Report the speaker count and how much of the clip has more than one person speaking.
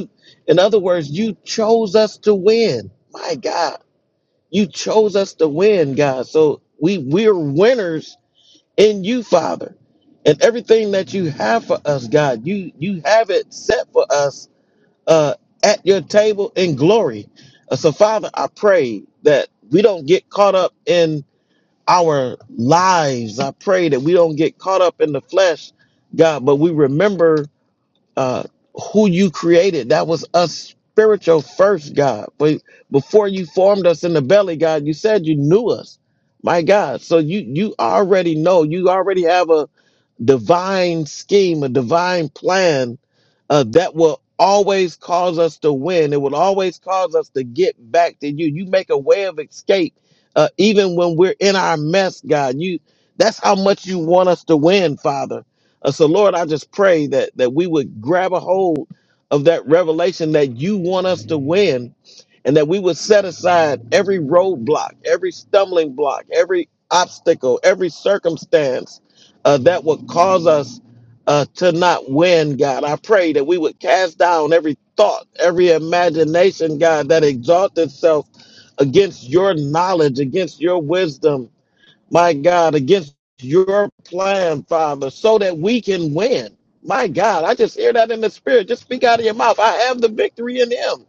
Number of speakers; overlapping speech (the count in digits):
1, no overlap